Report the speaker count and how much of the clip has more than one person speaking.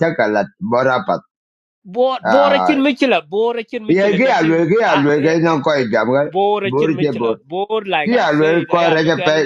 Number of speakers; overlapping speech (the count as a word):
two, about 43%